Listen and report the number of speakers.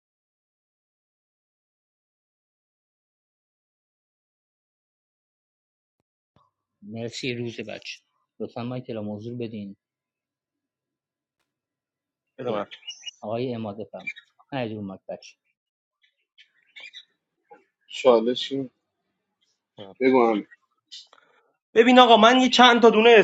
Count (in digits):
3